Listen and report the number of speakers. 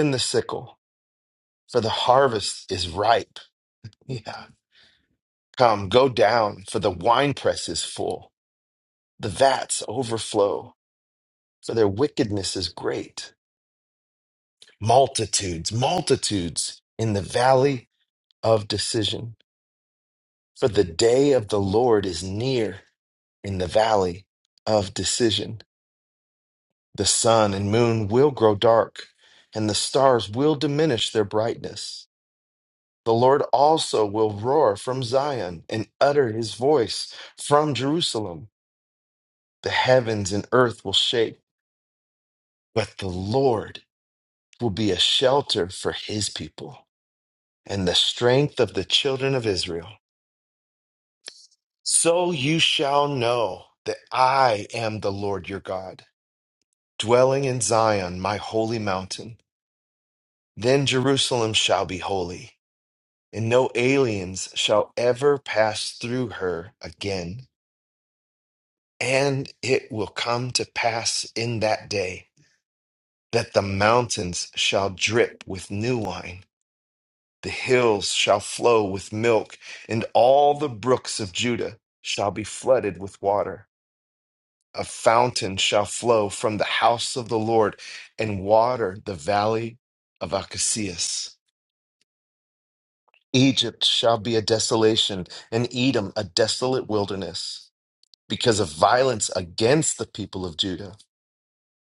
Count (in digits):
1